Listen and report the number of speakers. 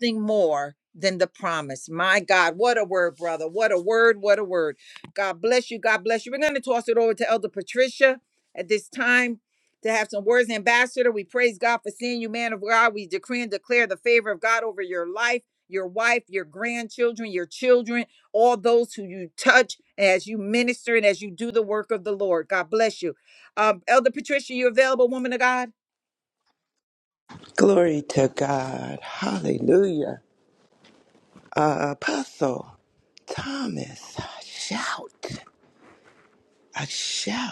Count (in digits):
2